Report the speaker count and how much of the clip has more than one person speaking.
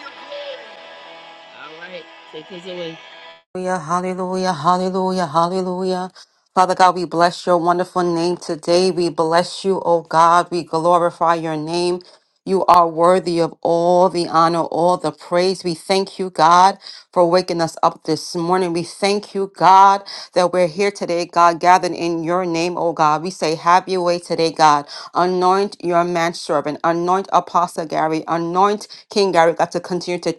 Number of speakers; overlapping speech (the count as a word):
two, no overlap